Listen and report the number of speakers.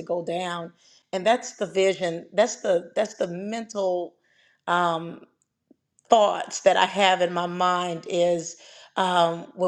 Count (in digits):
1